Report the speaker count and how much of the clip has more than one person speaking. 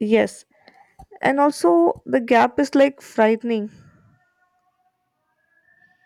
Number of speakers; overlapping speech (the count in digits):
1, no overlap